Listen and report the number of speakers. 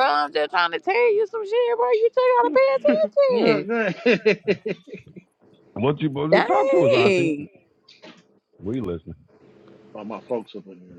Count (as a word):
three